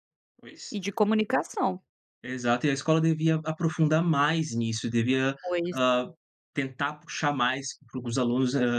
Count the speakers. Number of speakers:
2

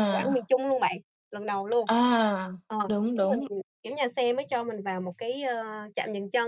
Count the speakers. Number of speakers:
2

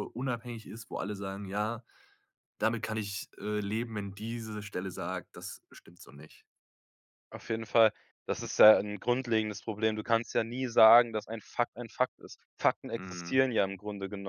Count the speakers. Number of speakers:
2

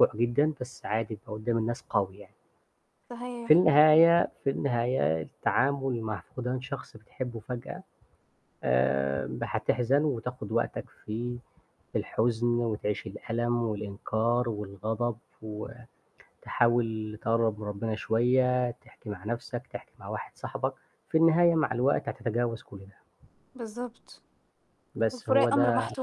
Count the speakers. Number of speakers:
2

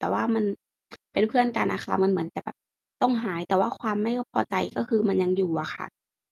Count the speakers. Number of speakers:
1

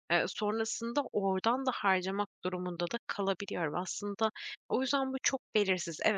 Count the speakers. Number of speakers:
1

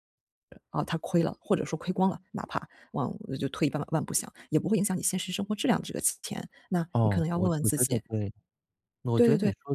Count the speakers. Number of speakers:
2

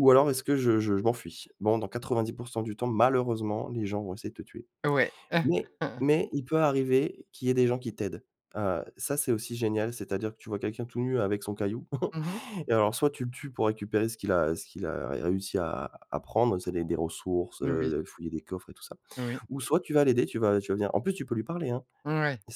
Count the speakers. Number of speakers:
2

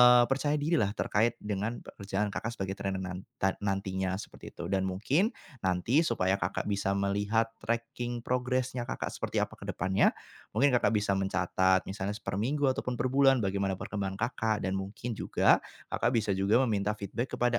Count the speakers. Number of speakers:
1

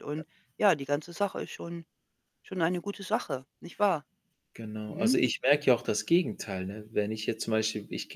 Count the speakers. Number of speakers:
2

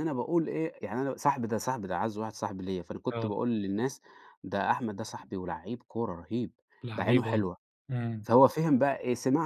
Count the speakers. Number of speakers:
2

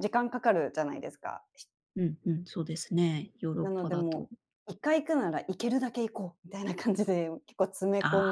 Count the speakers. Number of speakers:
2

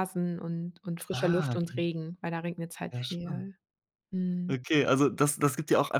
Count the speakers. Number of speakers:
2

